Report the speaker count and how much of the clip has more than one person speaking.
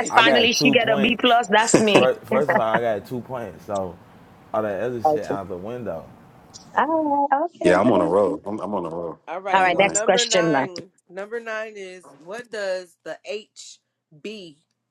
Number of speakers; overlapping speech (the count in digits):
4, about 23%